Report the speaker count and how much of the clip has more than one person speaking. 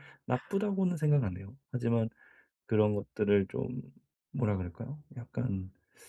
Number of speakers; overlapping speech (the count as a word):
one, no overlap